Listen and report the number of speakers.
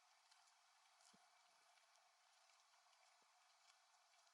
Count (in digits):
0